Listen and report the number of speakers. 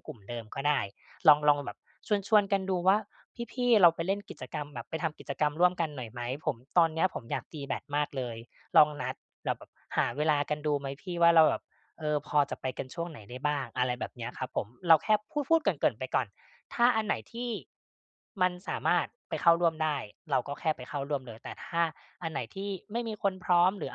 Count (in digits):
1